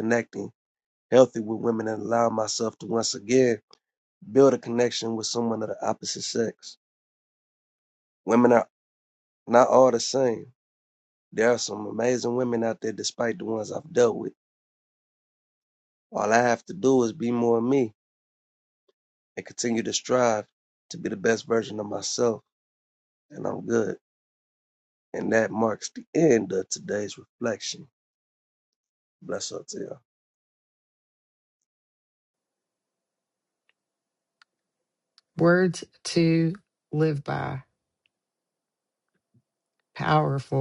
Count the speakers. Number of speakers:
2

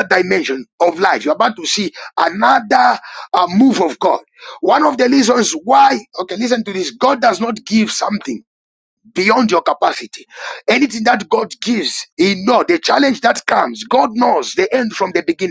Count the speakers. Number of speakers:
1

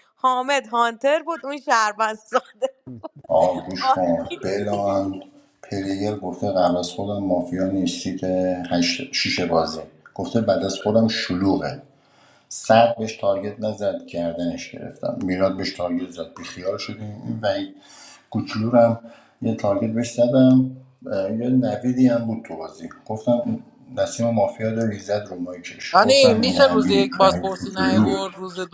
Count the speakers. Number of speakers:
3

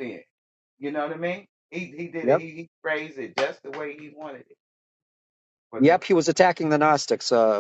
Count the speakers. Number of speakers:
2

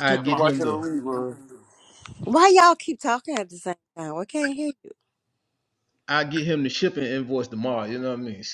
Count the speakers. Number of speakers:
3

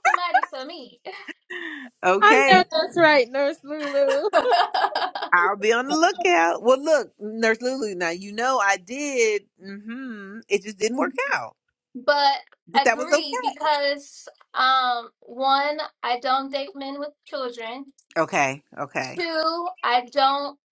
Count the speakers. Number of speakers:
3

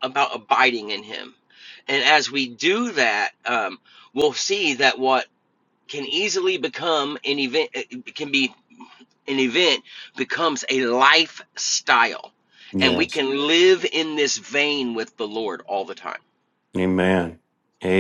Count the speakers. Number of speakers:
2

